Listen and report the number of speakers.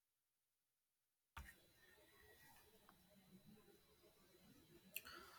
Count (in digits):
0